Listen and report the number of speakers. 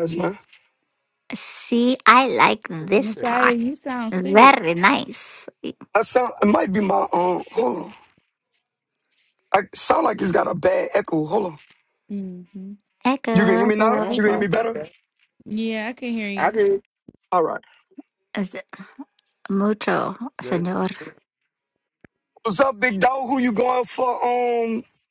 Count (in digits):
4